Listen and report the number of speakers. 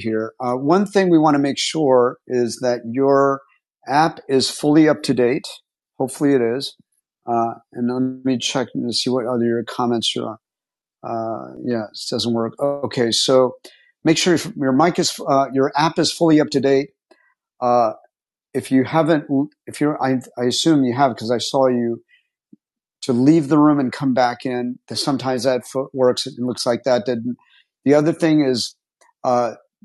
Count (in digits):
1